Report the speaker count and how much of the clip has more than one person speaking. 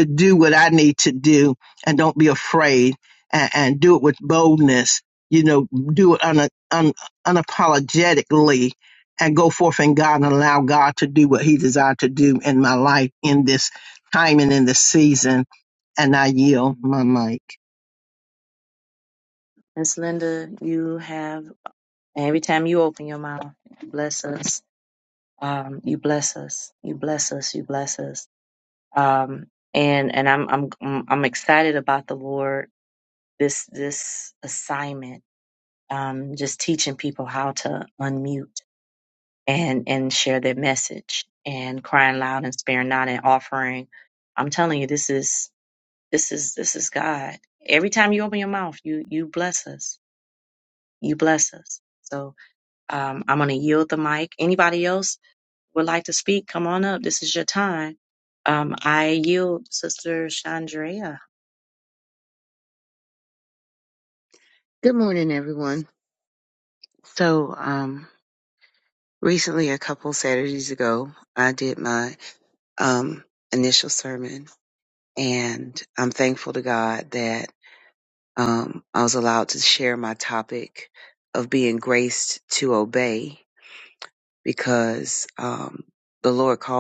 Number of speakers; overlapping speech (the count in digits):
3, no overlap